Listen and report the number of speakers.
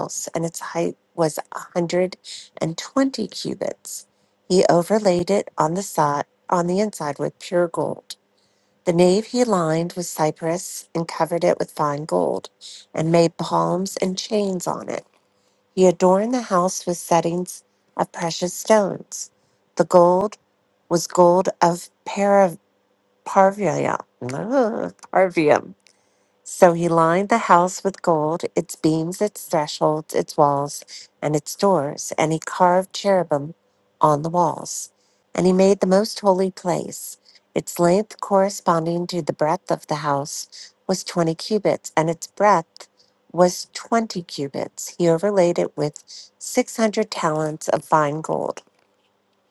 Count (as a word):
one